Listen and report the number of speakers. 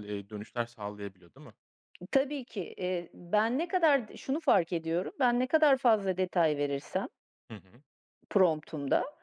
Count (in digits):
2